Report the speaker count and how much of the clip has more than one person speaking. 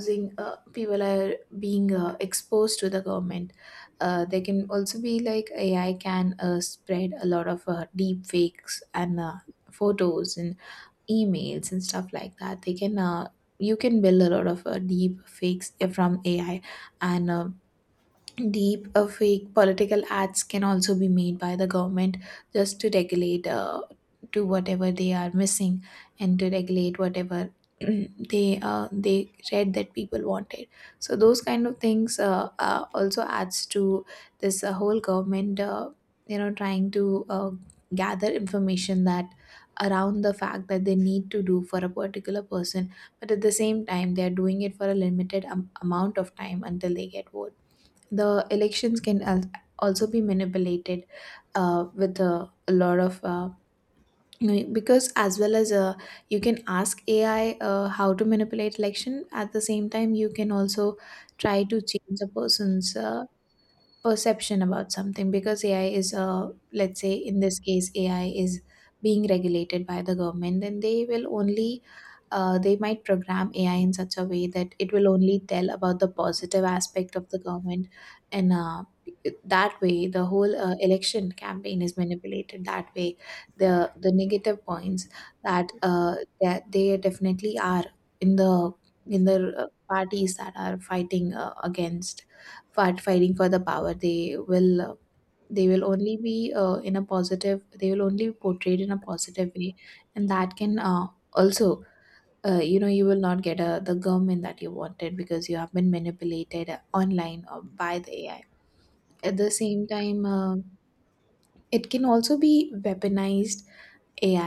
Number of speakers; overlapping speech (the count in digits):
1, no overlap